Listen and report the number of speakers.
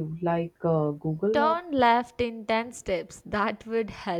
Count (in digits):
2